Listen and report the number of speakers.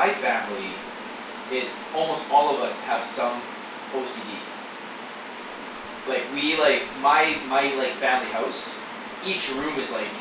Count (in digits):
1